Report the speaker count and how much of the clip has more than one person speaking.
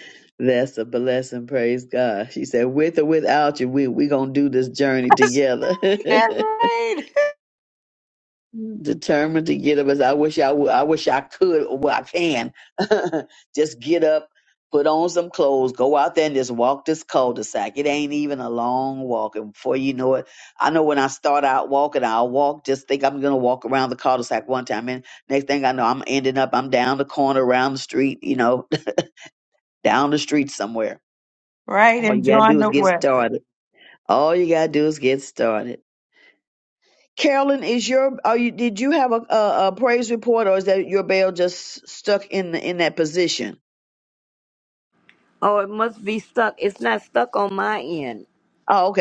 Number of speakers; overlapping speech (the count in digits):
3, about 3%